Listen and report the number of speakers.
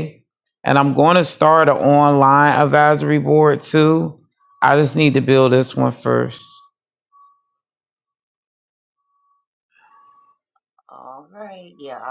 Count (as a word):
two